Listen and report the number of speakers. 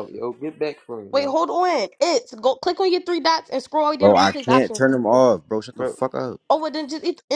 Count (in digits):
3